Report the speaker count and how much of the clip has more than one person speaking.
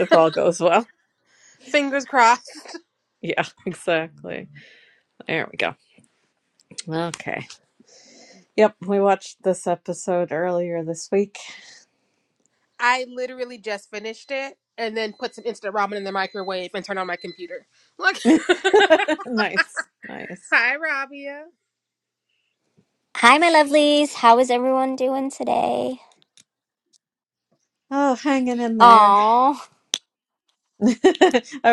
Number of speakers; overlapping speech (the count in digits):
3, about 1%